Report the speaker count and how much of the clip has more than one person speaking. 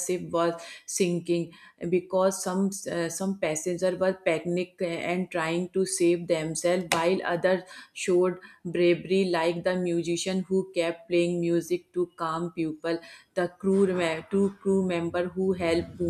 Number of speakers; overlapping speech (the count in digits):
1, no overlap